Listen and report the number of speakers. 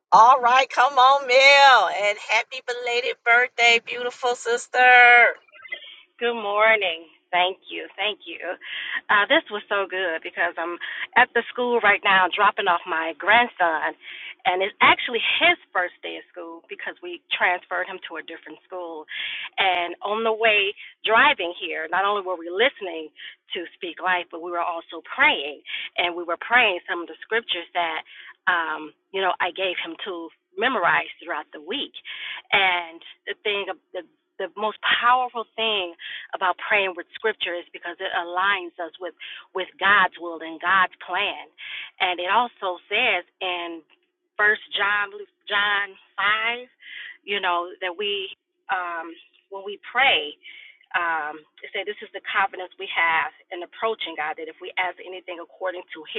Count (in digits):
2